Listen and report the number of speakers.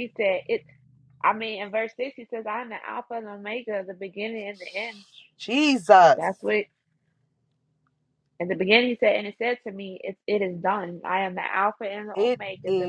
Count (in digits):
2